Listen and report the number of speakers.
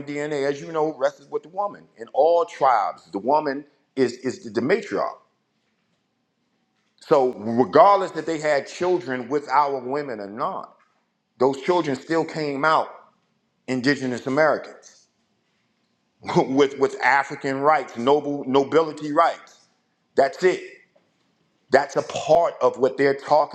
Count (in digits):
1